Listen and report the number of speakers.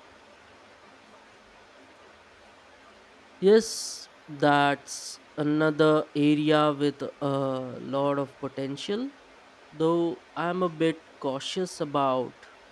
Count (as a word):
one